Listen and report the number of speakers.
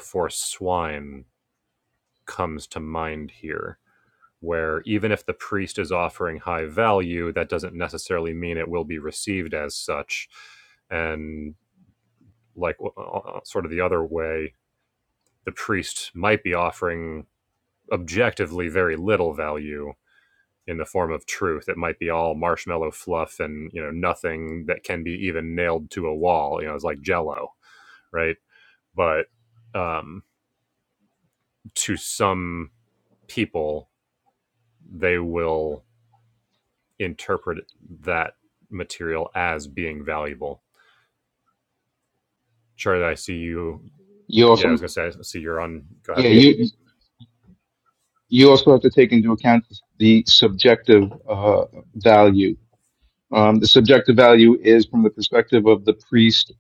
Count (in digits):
2